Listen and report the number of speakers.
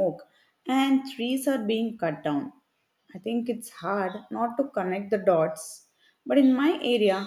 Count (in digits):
1